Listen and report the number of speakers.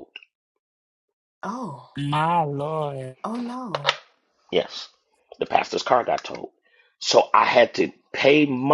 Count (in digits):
3